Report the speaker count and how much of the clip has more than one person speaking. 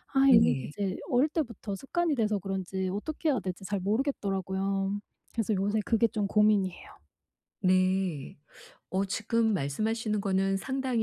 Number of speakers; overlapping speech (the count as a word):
two, about 4%